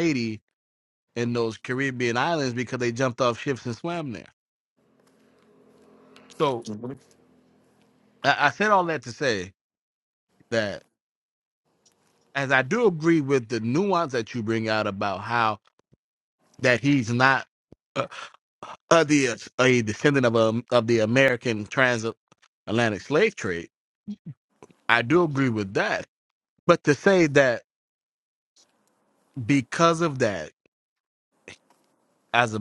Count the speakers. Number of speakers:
one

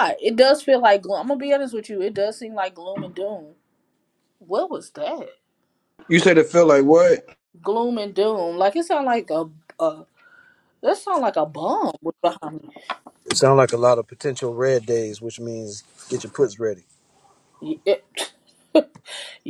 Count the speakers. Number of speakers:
three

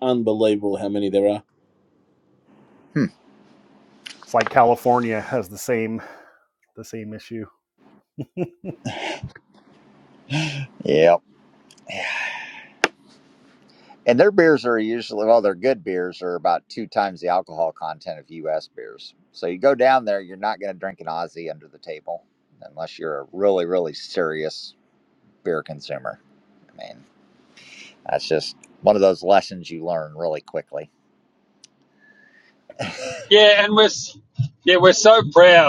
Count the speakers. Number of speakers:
four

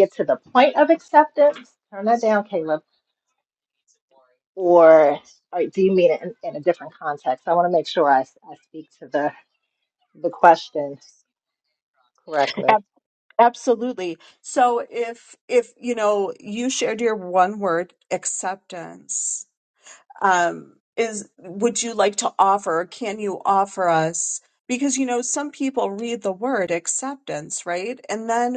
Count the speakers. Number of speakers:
two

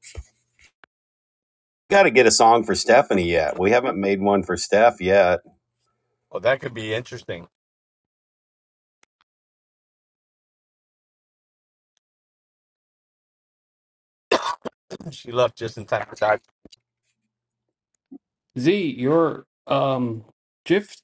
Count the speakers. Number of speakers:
three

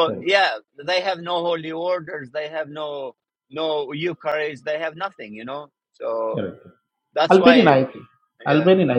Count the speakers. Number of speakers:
two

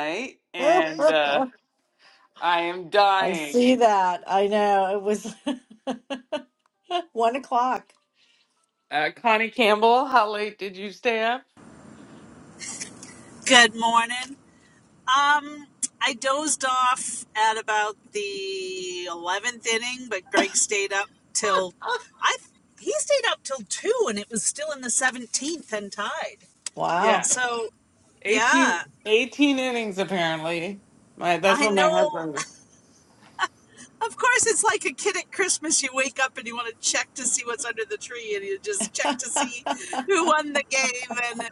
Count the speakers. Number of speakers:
three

